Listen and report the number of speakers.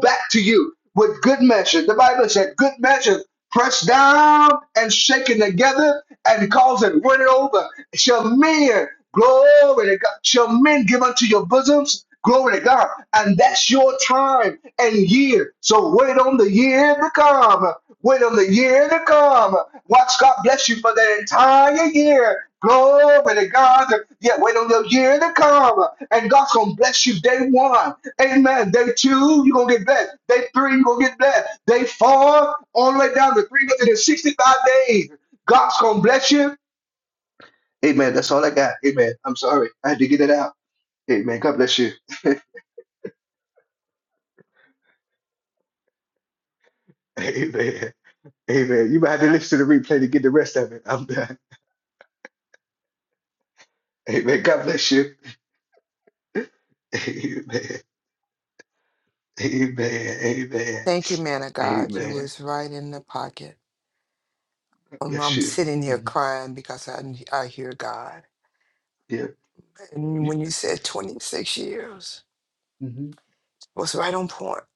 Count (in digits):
2